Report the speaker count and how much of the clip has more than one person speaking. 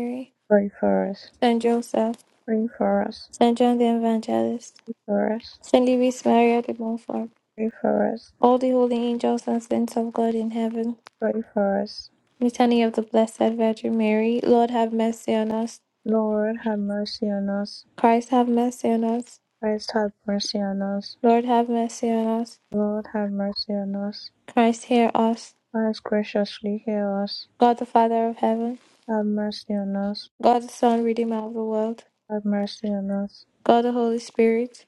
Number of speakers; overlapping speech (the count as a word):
two, no overlap